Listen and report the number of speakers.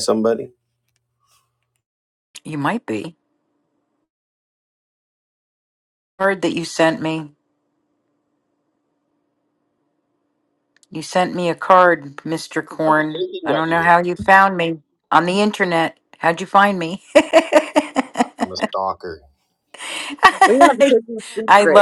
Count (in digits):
3